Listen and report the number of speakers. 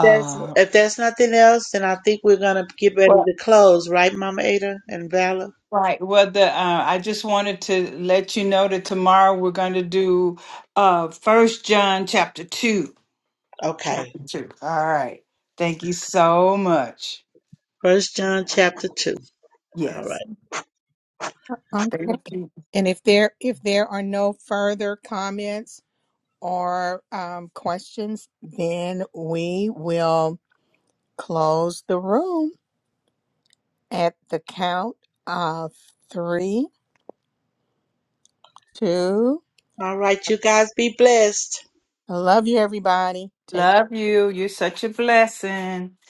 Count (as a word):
three